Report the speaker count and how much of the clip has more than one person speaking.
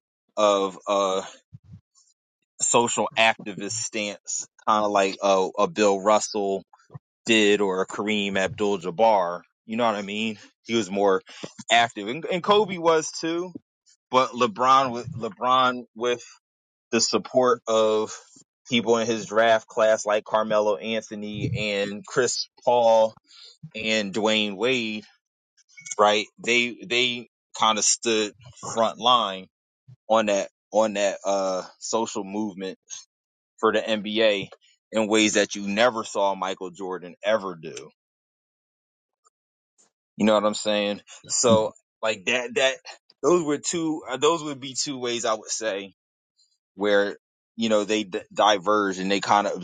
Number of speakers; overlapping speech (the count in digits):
1, no overlap